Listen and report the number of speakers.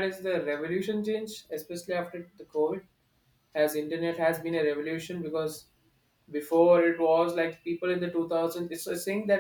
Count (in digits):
1